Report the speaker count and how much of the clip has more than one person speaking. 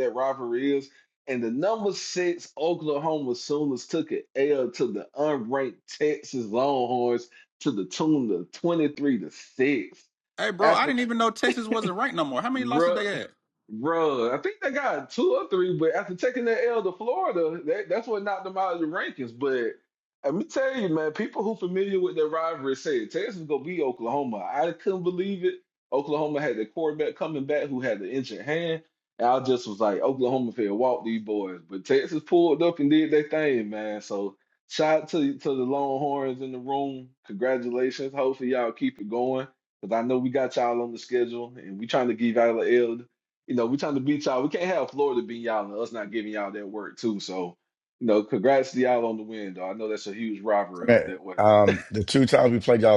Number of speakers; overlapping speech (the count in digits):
3, about 2%